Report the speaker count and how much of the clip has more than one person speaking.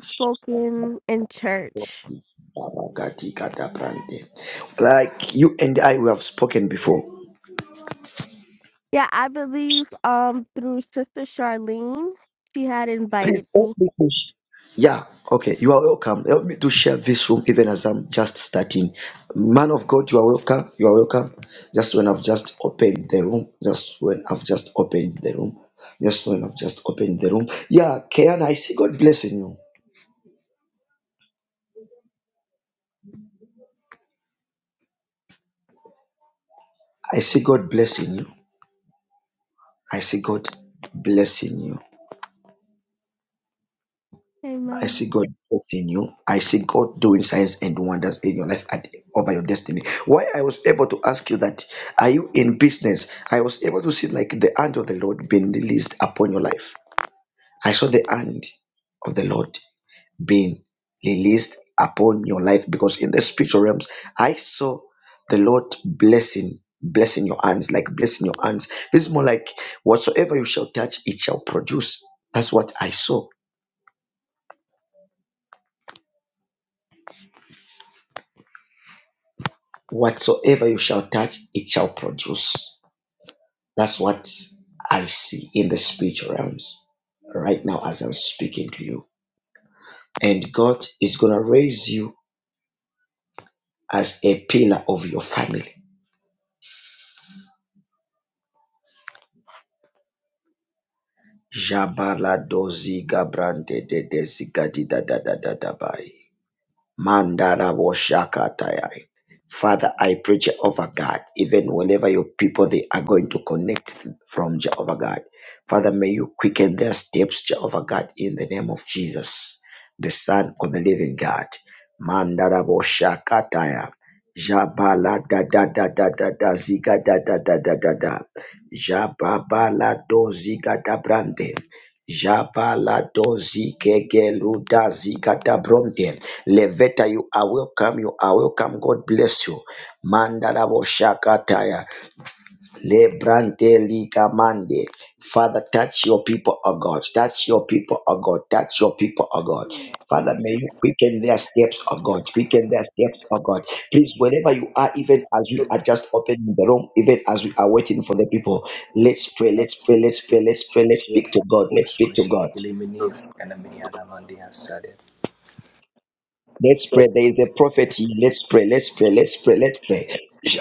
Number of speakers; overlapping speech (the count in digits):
3, about 1%